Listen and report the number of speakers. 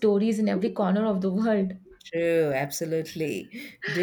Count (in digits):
2